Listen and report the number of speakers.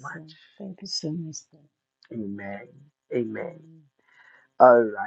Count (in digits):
2